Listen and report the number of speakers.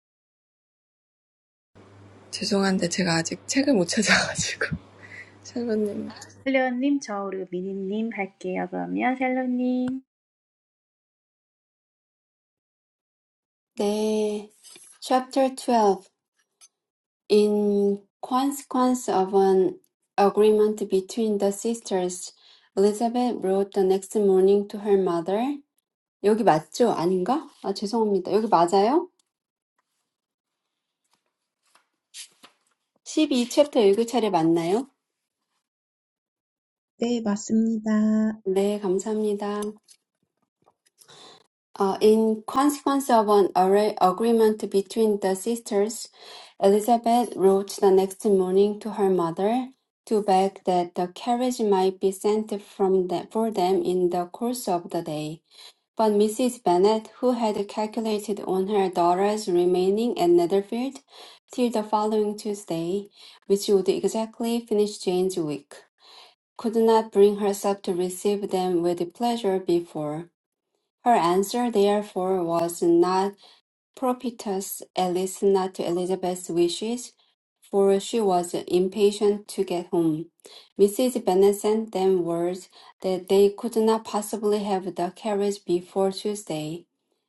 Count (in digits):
4